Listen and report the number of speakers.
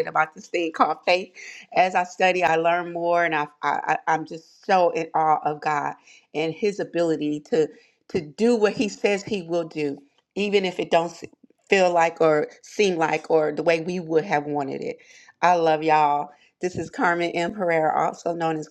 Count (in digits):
1